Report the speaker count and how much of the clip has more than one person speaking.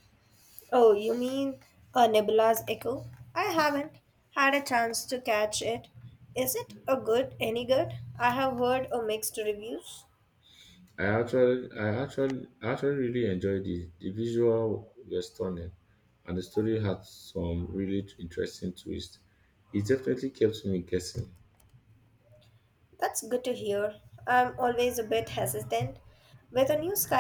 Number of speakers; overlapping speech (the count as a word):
two, no overlap